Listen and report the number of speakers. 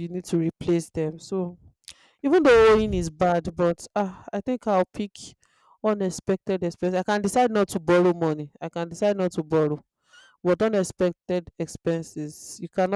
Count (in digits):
1